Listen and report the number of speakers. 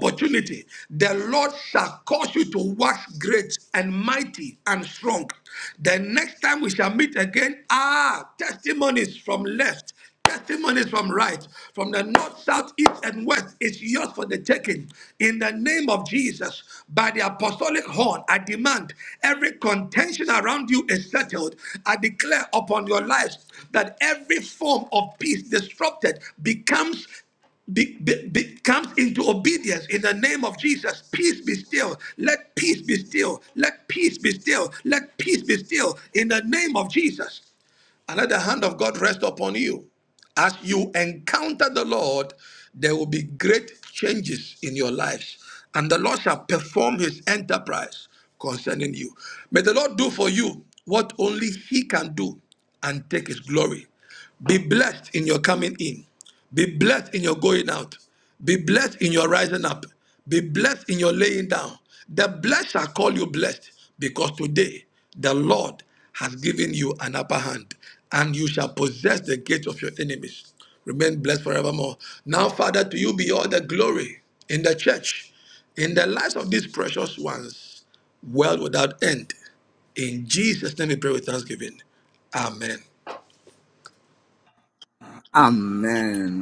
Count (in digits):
2